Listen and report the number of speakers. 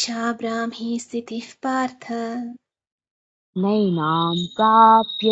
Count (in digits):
2